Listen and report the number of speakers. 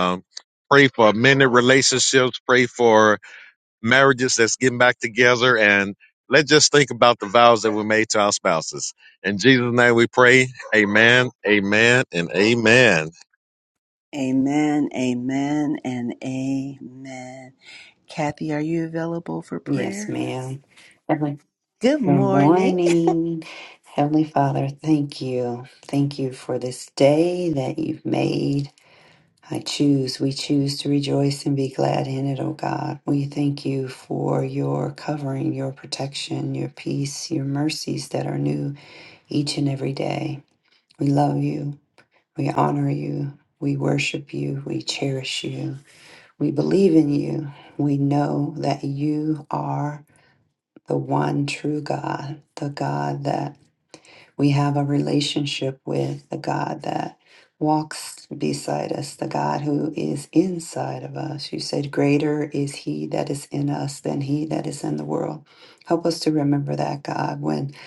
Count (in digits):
3